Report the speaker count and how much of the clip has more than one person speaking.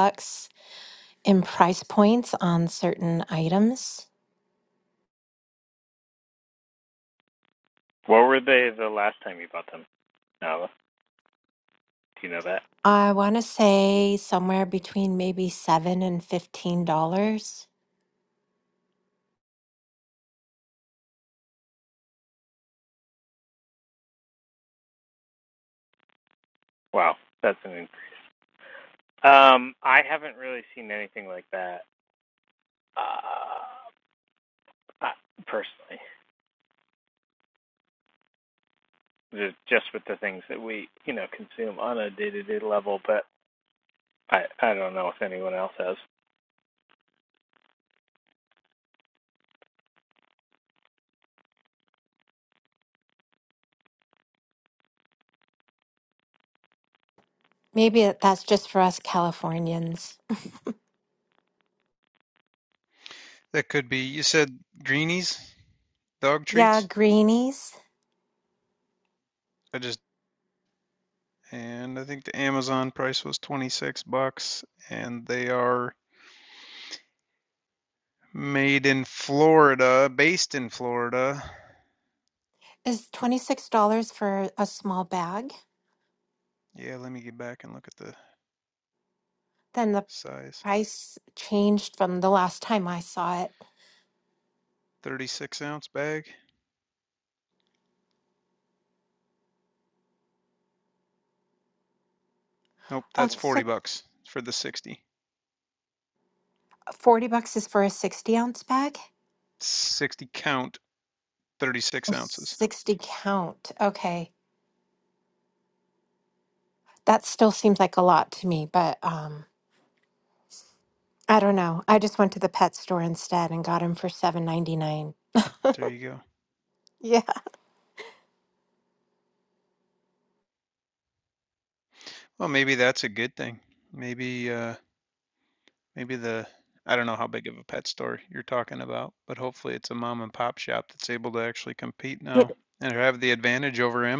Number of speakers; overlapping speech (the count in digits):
3, about 1%